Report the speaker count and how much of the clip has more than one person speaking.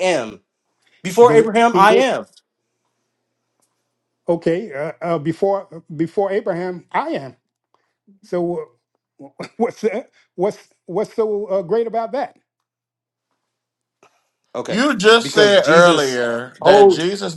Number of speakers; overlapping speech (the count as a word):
three, about 10%